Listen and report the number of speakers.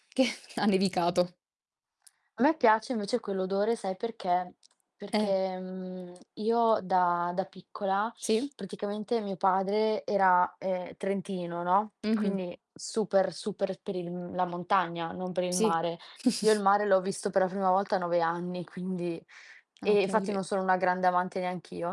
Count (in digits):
2